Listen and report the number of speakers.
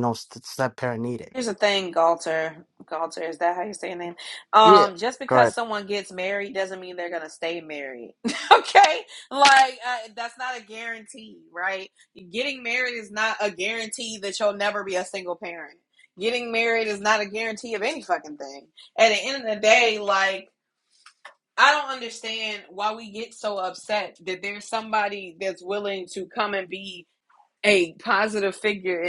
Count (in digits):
2